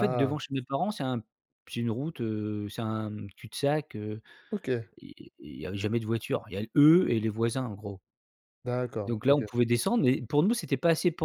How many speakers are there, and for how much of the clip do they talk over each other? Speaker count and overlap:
2, about 7%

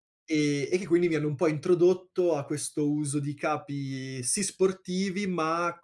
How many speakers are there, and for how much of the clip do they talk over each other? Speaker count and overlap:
1, no overlap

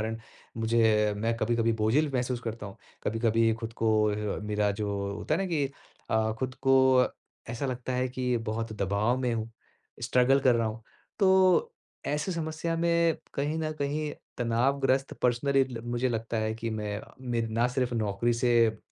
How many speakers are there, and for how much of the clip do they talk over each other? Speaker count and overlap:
1, no overlap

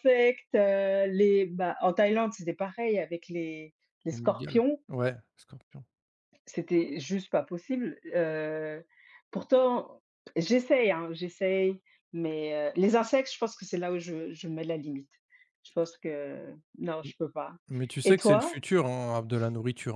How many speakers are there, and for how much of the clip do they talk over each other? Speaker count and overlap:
2, about 5%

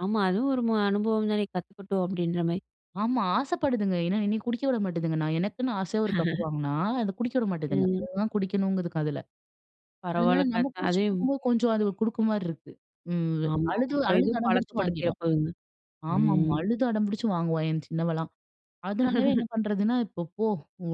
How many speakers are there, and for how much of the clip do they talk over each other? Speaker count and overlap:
2, about 18%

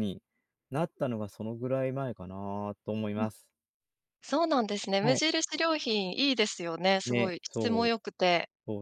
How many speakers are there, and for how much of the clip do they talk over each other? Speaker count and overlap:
2, about 13%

